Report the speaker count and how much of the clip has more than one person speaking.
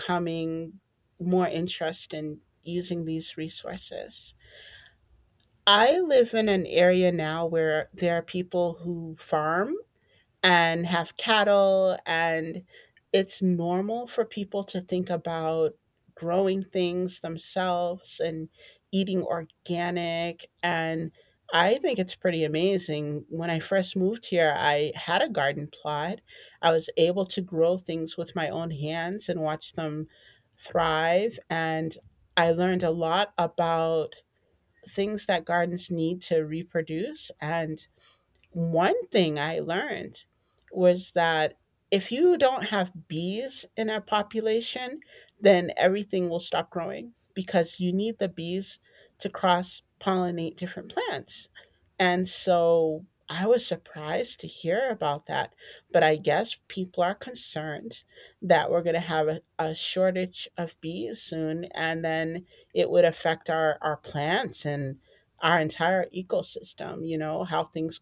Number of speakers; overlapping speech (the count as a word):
one, no overlap